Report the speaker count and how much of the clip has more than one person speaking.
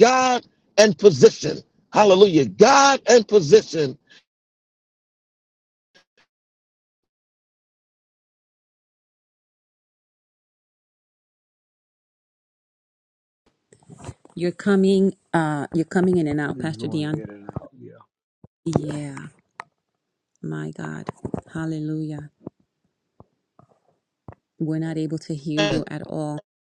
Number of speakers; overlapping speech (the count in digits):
3, about 3%